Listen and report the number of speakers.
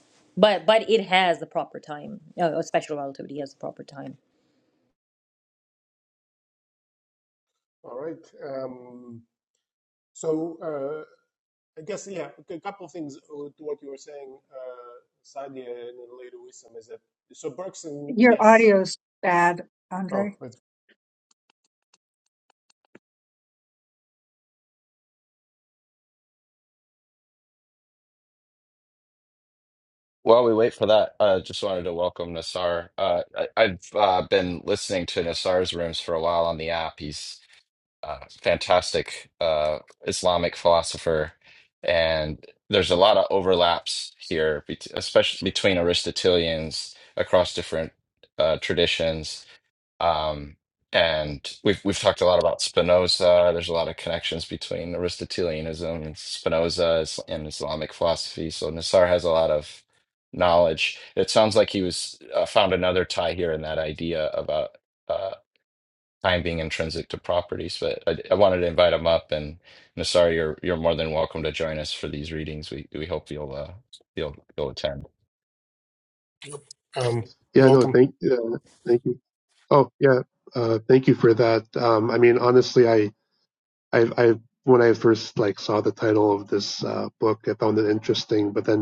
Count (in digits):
5